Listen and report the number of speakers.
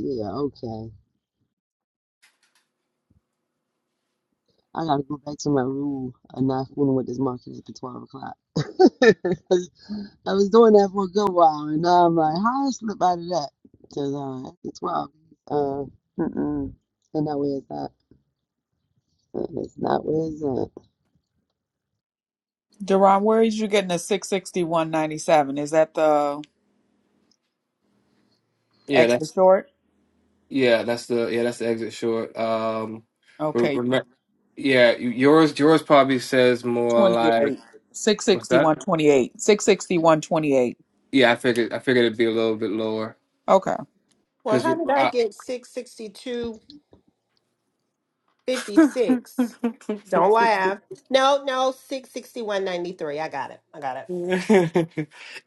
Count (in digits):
4